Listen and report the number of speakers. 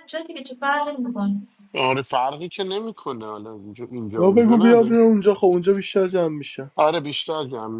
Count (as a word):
three